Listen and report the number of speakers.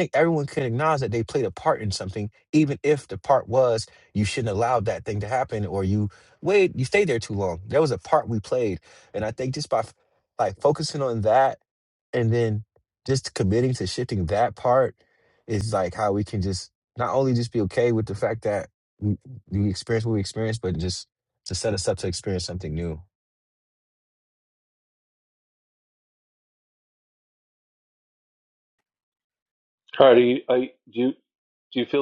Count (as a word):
two